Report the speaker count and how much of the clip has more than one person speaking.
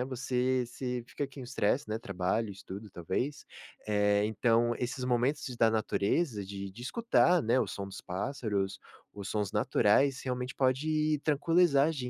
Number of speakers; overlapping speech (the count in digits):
1, no overlap